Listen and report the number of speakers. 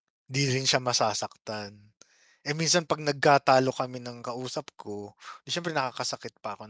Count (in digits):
1